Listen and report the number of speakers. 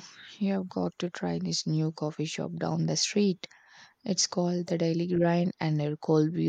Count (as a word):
one